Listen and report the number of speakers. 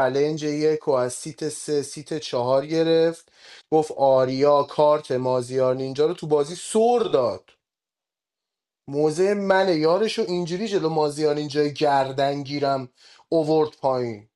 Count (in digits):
1